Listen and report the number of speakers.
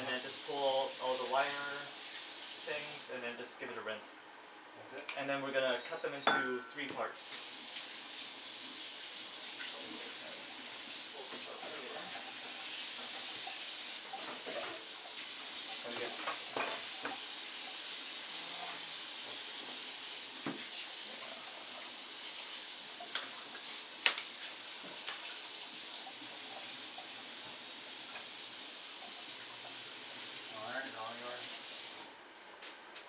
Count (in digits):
2